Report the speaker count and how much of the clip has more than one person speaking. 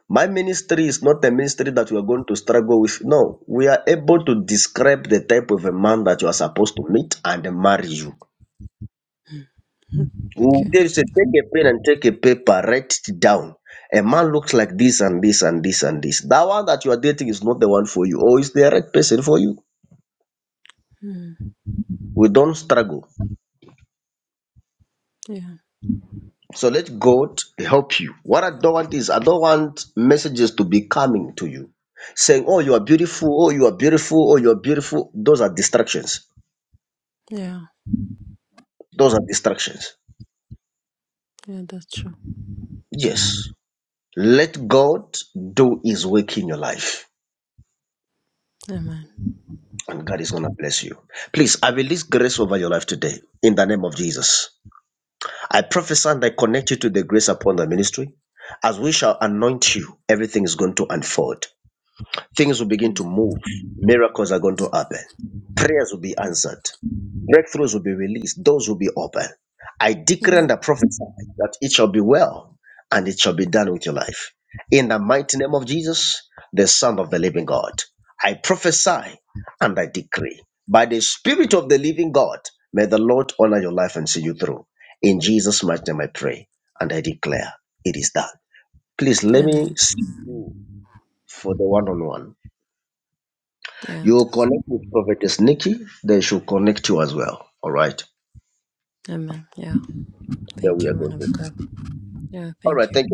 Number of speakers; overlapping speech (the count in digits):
2, about 3%